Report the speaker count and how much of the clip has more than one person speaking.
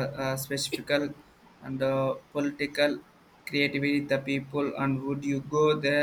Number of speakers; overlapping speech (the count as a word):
one, no overlap